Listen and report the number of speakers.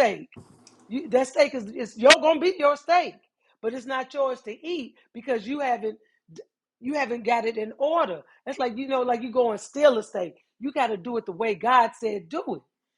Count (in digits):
1